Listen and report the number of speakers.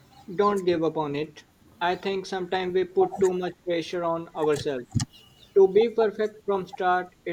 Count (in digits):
1